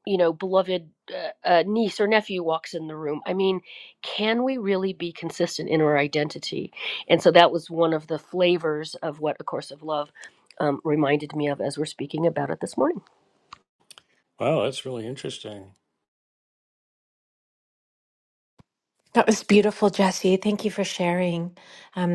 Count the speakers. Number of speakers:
3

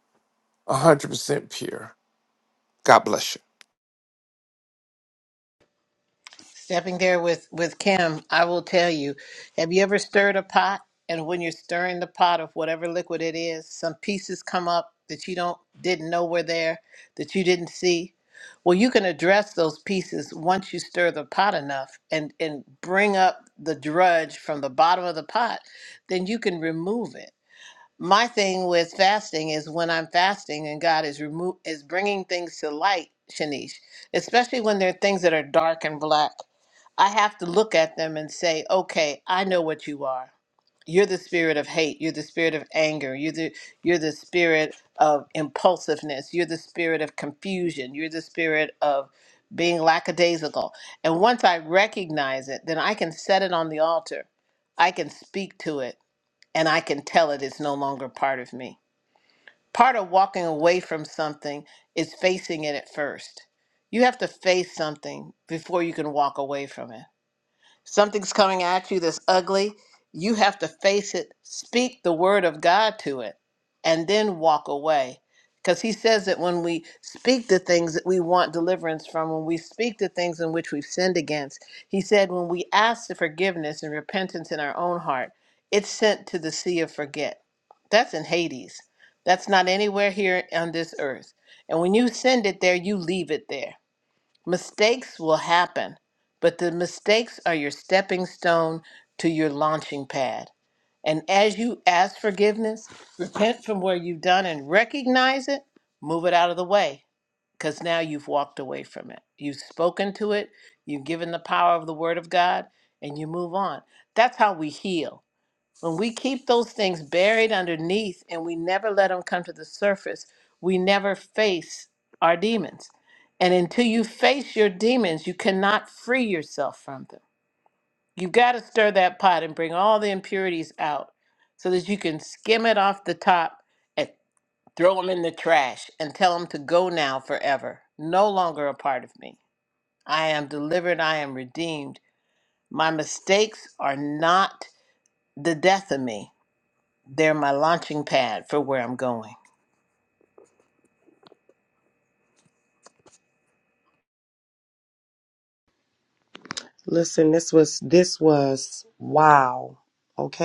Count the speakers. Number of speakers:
3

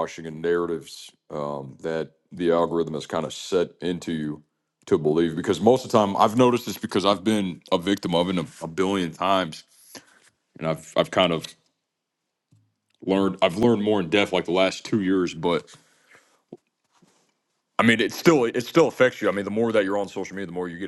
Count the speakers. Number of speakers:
1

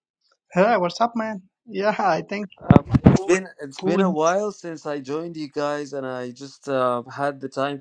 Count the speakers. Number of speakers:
2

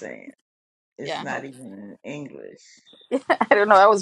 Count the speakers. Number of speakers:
2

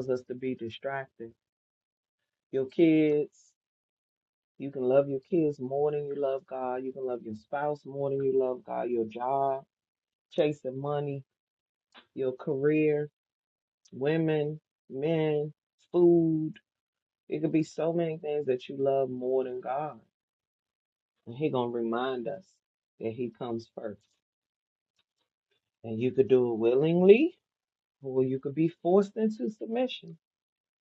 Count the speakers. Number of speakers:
1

